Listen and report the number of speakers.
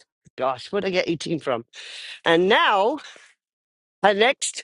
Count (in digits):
1